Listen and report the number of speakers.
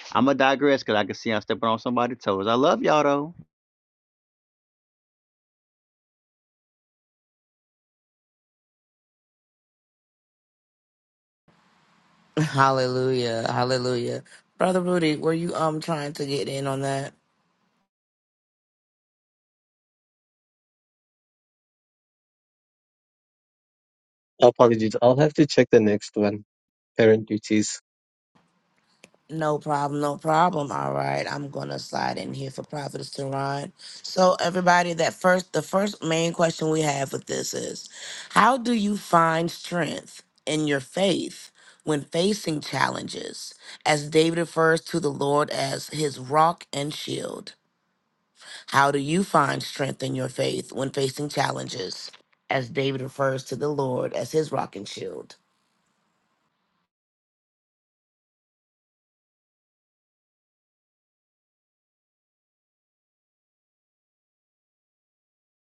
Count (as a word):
three